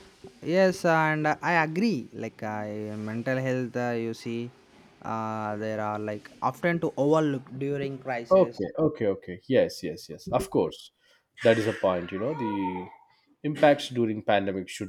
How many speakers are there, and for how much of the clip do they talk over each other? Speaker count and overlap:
2, about 2%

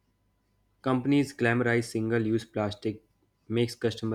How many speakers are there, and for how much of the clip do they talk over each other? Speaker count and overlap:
1, no overlap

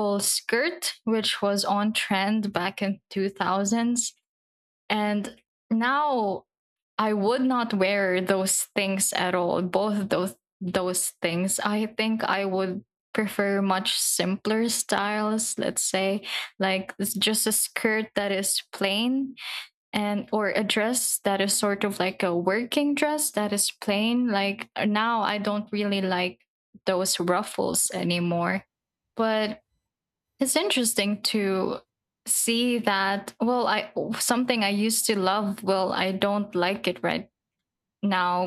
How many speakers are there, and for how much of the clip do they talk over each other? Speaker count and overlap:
1, no overlap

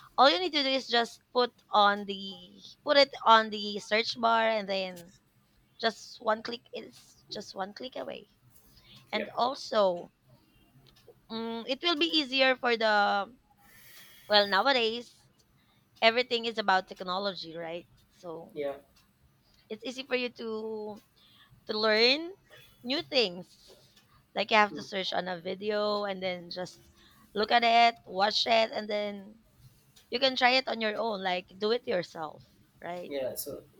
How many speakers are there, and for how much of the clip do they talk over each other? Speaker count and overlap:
2, about 1%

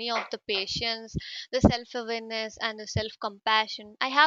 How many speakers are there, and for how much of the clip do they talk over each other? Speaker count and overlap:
1, no overlap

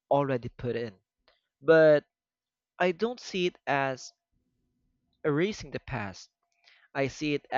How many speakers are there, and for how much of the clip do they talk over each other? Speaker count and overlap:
1, no overlap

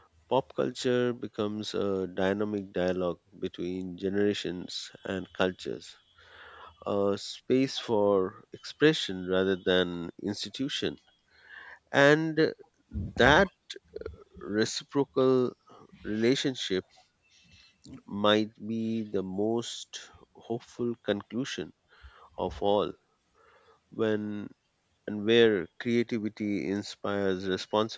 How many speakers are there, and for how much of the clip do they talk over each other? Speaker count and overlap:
1, no overlap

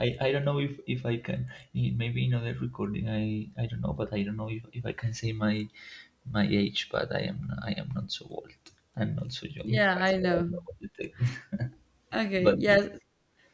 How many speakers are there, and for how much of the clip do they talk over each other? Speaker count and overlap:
2, about 9%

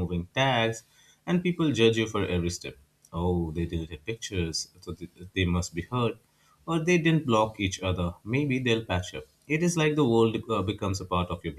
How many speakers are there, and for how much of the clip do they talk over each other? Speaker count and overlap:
1, no overlap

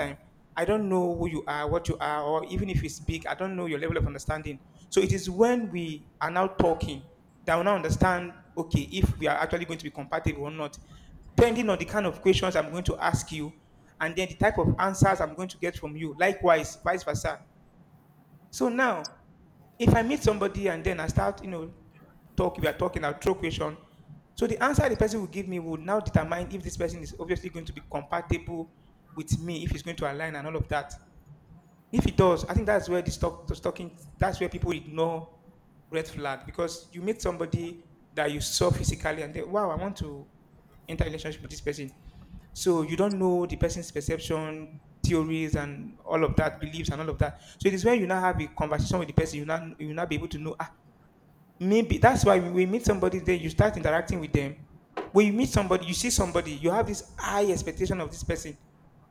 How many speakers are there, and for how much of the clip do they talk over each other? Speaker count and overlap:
1, no overlap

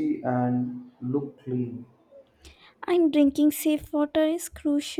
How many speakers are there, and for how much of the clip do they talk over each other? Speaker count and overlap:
2, no overlap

